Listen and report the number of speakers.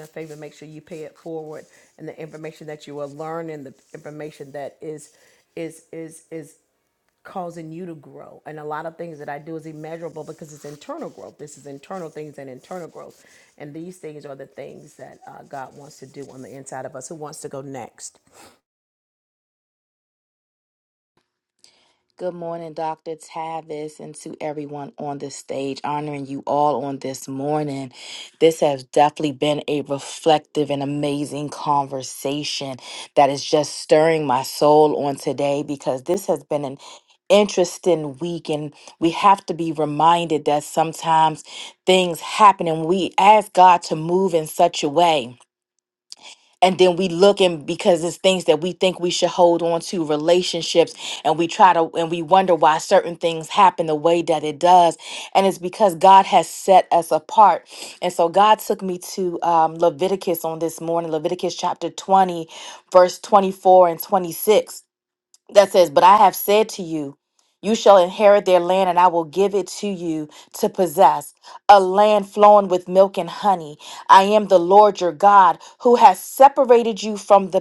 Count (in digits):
2